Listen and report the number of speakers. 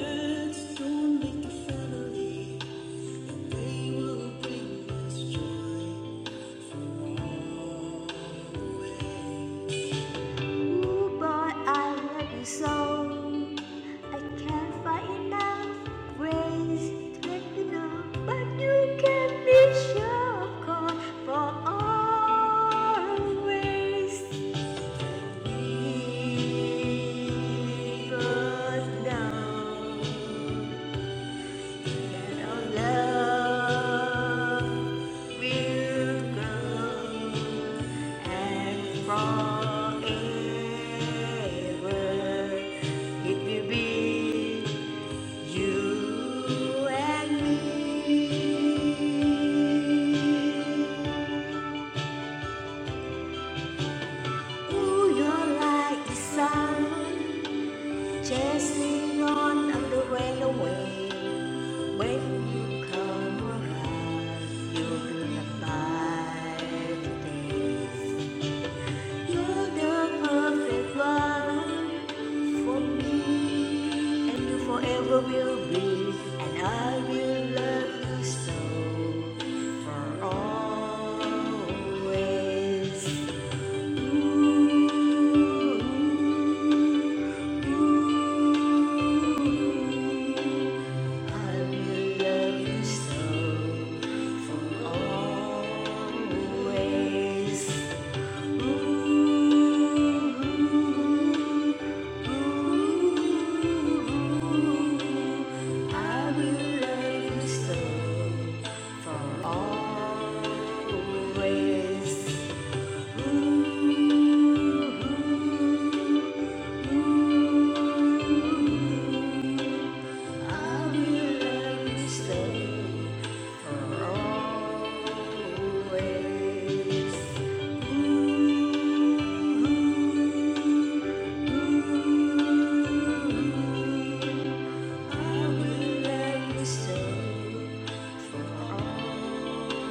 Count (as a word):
one